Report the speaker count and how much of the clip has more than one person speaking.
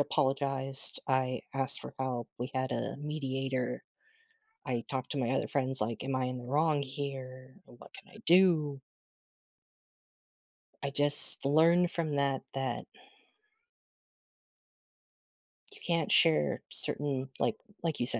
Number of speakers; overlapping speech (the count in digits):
1, no overlap